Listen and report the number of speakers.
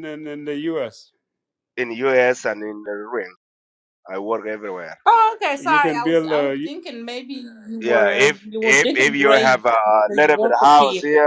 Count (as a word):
three